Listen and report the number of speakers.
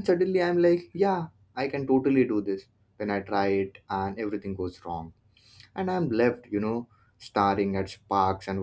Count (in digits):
1